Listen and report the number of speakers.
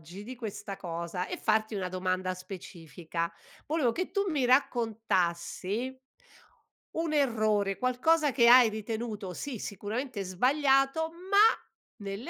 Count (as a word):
one